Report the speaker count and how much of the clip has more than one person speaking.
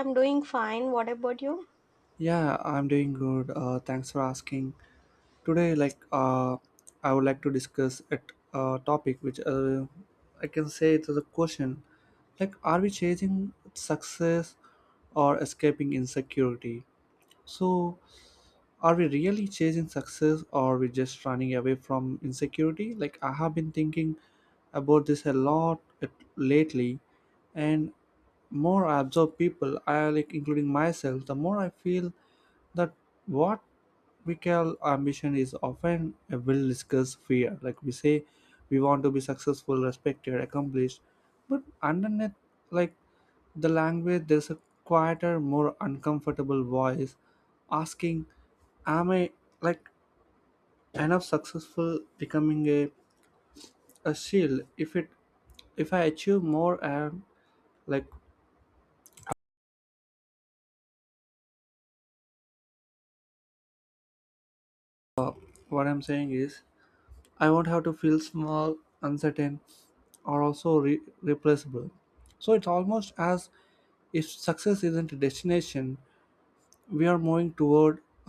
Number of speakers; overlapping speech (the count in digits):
2, no overlap